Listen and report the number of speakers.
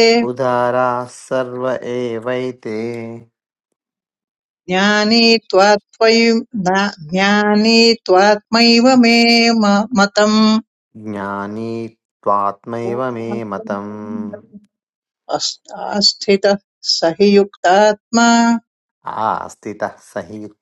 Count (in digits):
2